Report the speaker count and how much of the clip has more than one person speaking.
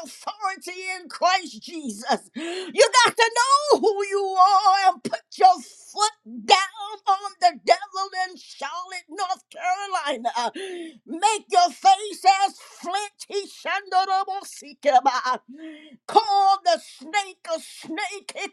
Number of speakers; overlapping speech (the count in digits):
1, no overlap